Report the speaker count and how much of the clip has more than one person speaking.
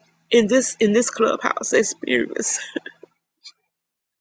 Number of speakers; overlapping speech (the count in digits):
1, no overlap